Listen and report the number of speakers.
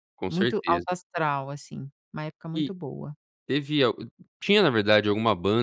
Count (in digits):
2